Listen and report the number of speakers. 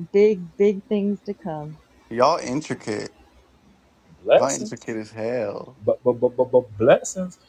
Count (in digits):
3